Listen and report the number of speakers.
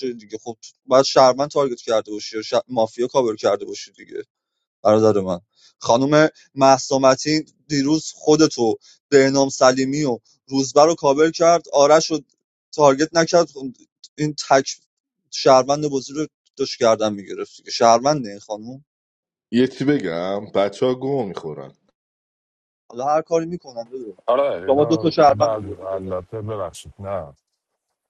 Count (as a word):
three